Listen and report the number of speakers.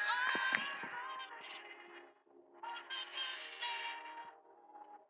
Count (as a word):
zero